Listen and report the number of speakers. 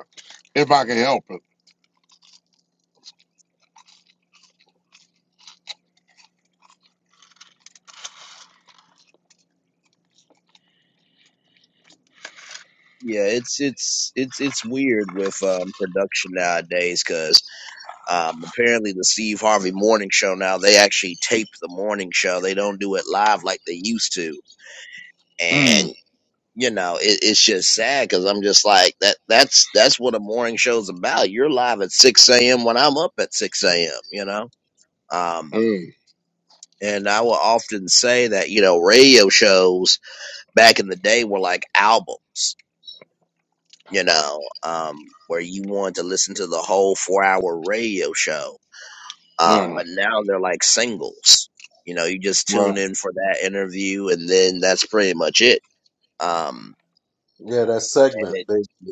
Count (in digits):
3